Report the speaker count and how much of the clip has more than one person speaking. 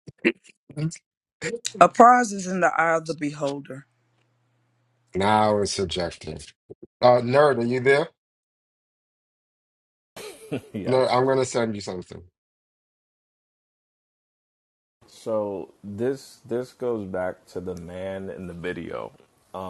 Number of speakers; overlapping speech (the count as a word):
three, about 1%